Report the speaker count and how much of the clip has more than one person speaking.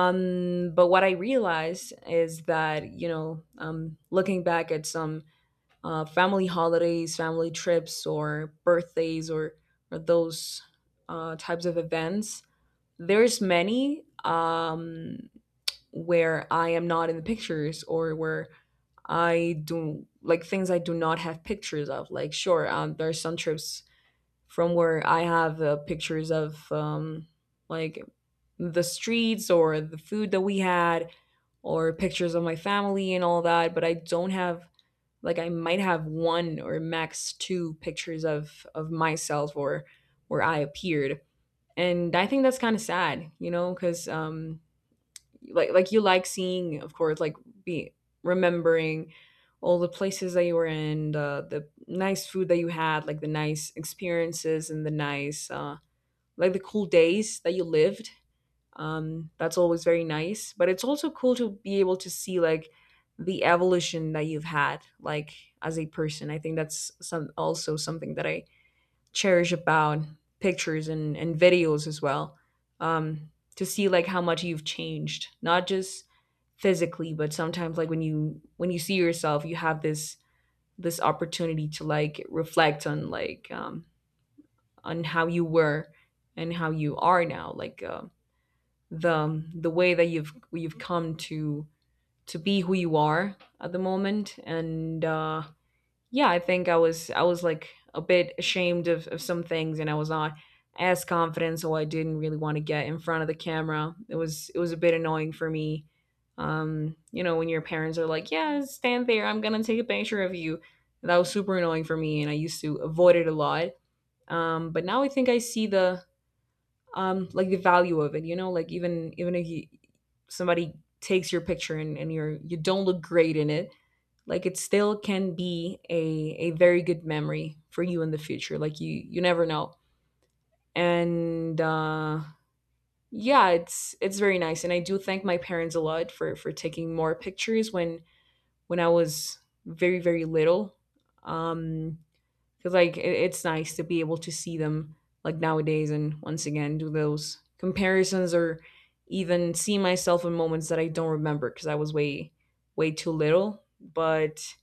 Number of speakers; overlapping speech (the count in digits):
1, no overlap